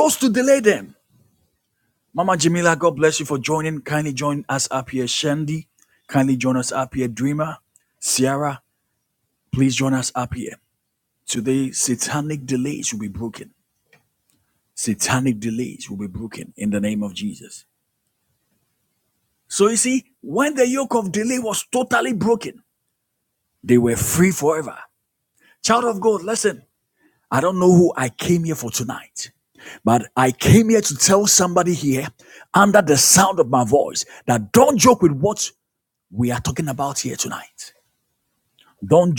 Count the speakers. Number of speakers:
one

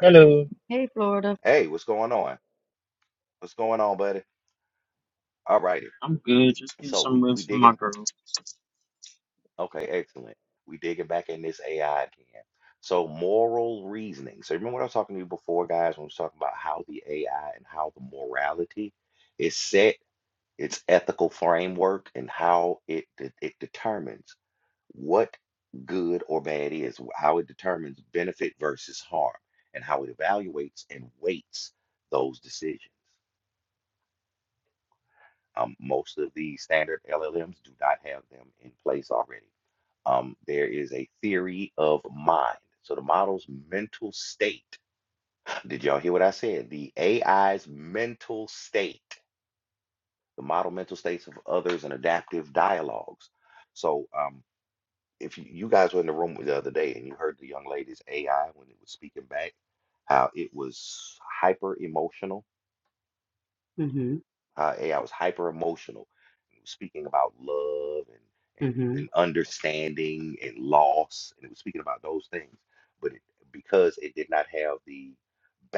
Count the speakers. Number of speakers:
three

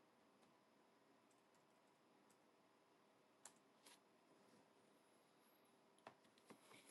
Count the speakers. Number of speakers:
zero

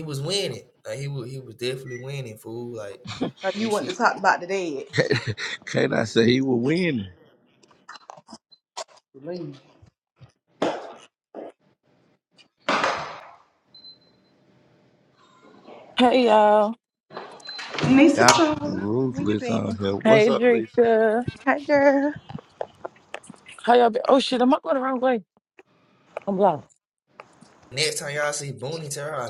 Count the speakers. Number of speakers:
four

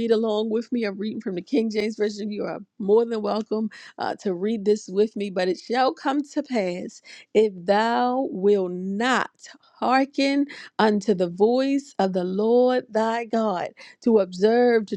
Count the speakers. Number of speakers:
one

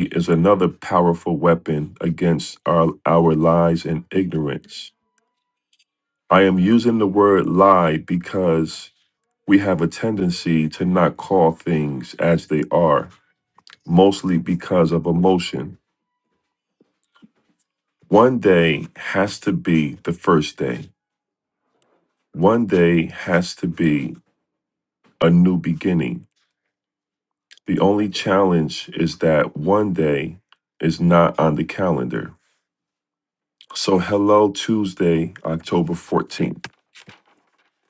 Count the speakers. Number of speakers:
one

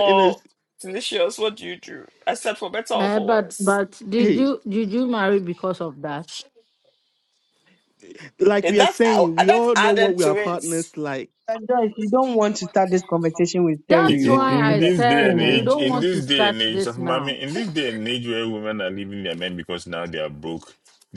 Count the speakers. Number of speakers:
five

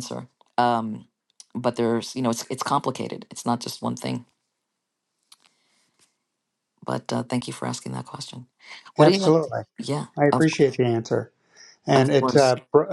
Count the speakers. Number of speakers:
two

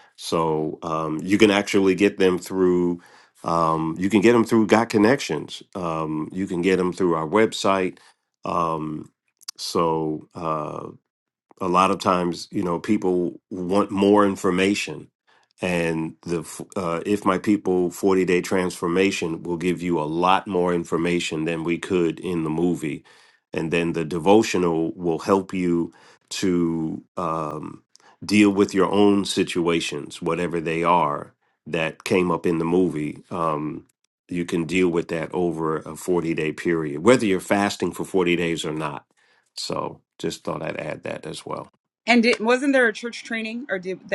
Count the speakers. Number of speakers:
two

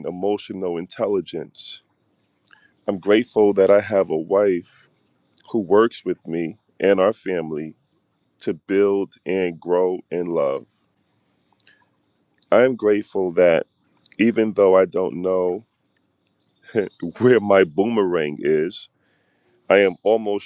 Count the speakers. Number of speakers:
one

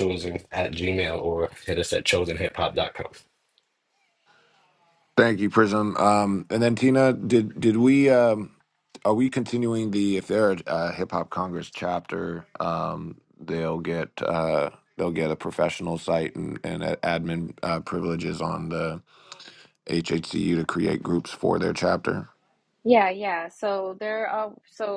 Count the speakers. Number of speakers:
three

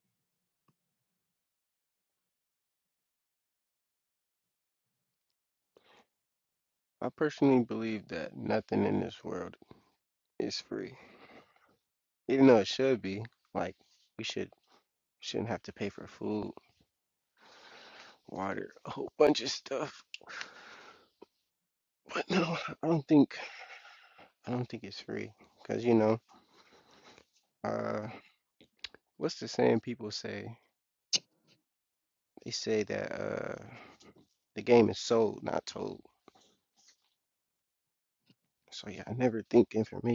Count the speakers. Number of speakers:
one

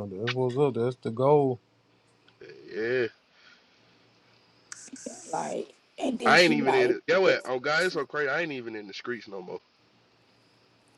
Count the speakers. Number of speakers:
three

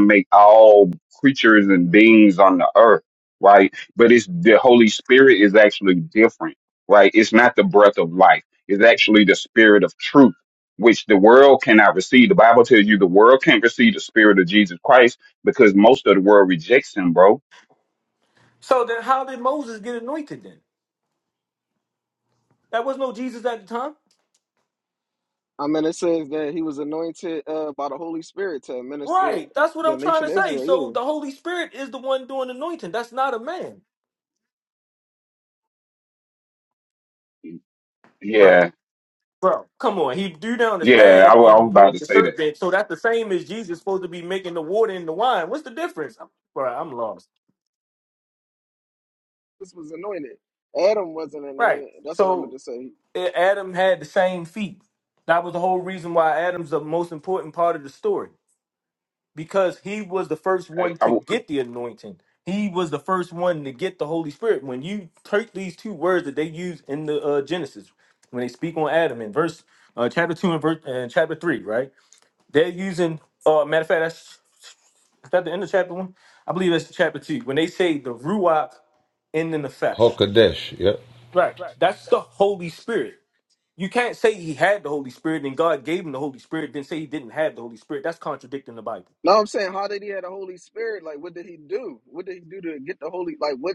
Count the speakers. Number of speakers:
four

